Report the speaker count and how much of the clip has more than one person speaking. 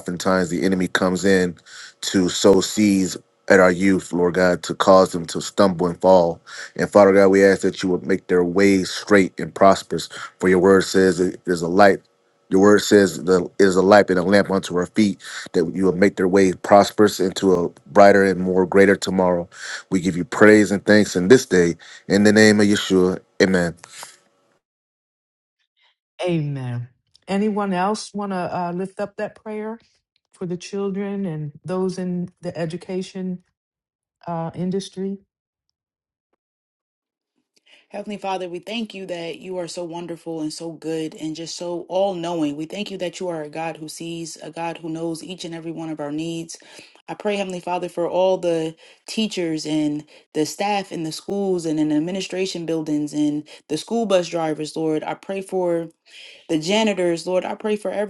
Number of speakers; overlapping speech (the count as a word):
three, no overlap